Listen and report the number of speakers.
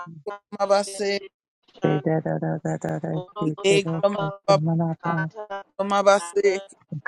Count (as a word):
three